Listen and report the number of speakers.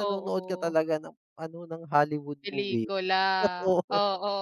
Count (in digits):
2